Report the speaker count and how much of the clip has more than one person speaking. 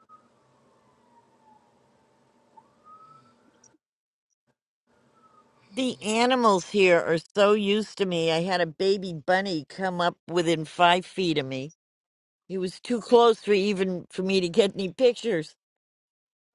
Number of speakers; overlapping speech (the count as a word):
one, no overlap